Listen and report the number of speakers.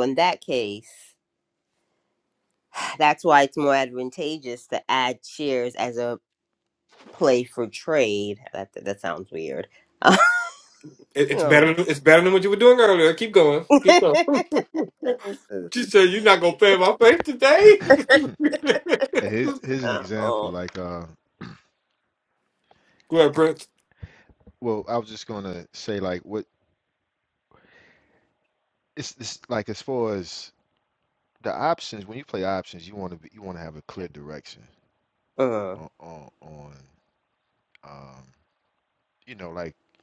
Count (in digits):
3